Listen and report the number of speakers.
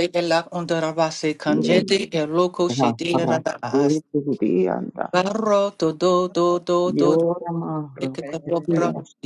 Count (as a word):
two